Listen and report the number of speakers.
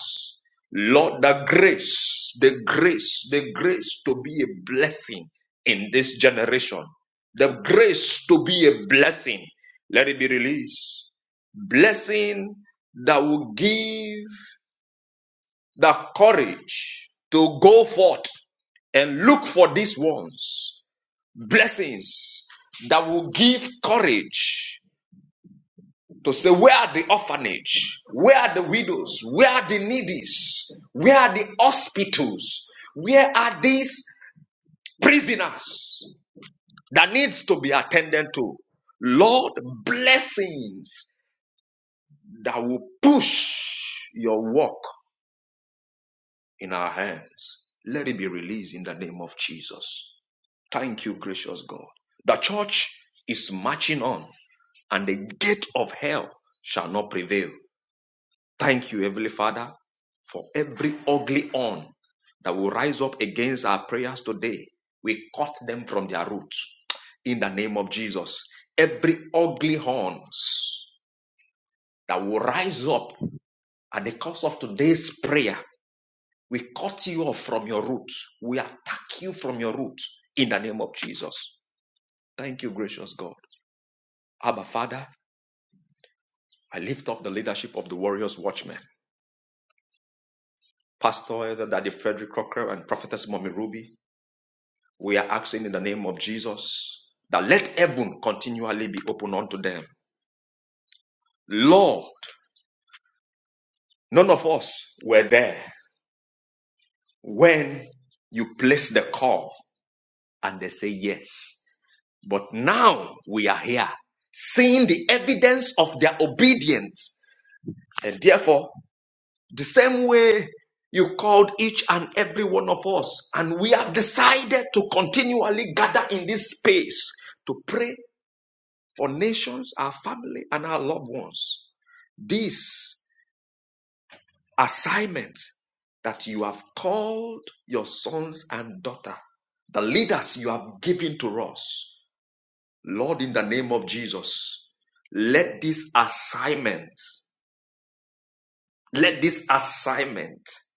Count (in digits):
1